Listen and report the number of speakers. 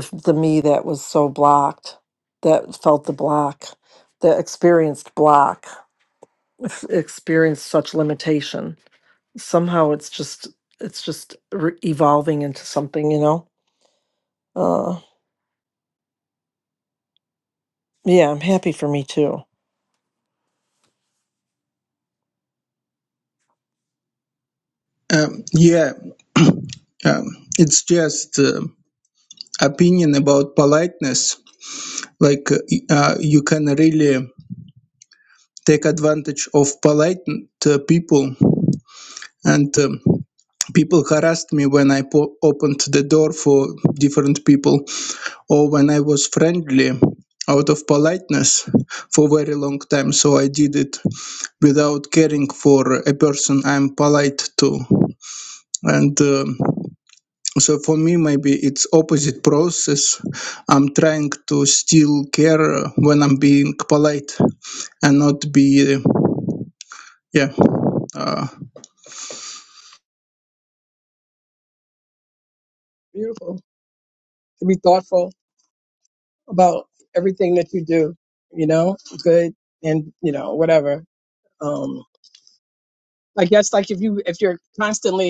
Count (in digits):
3